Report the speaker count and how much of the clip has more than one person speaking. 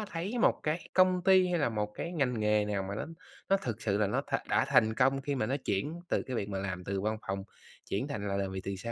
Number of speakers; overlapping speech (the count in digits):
1, no overlap